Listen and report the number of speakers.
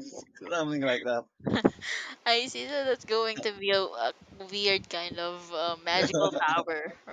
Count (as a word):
two